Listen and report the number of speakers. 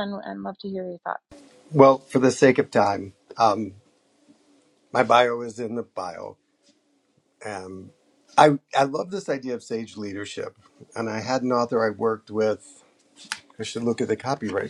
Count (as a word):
two